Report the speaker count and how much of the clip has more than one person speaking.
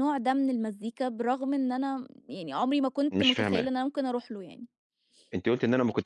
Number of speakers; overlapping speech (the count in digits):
2, about 9%